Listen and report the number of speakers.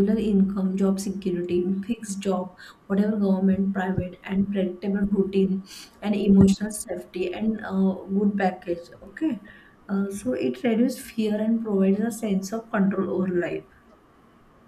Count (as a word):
one